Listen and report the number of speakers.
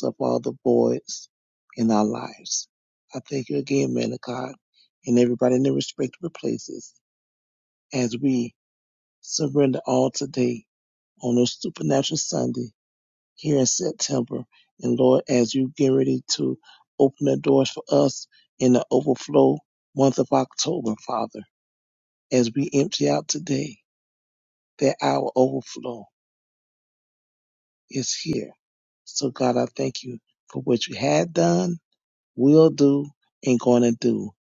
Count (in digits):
1